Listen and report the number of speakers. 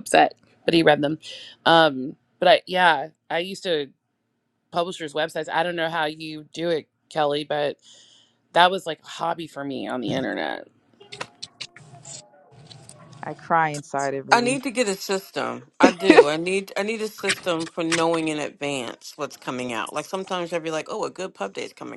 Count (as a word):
three